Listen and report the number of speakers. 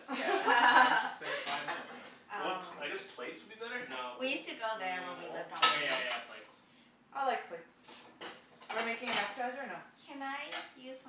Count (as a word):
four